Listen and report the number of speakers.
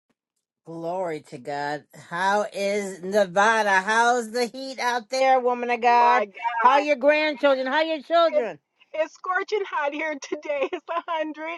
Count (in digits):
2